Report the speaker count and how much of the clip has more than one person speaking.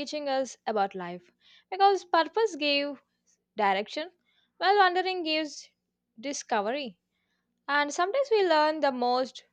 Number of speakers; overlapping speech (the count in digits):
1, no overlap